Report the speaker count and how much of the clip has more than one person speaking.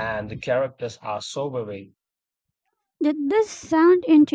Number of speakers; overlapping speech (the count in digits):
2, no overlap